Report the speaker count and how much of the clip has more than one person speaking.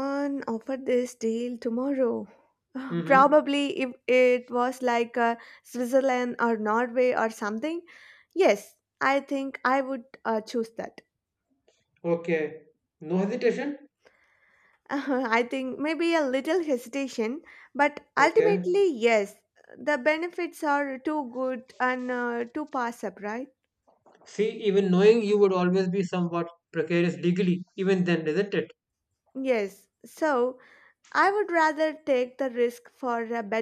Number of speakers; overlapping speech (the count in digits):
2, about 2%